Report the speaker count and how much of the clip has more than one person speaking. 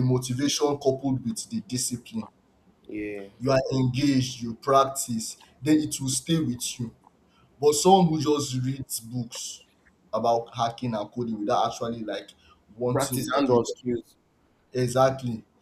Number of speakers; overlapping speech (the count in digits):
2, about 4%